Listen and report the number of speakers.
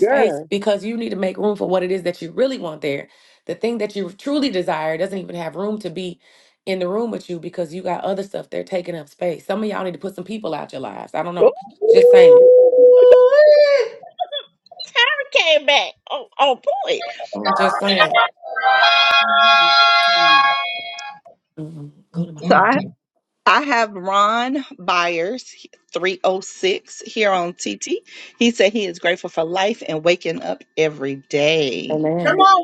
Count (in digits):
3